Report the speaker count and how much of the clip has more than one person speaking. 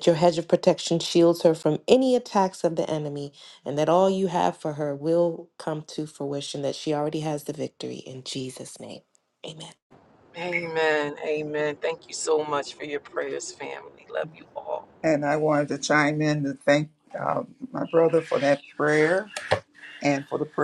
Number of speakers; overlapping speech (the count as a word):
three, no overlap